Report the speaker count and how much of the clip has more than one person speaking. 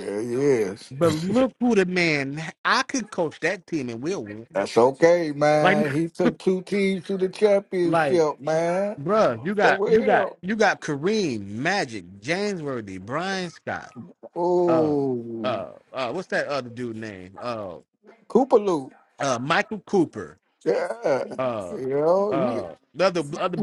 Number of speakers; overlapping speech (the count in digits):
2, about 9%